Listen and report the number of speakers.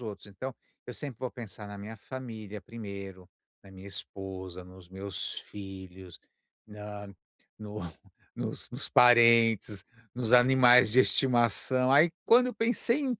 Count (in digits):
1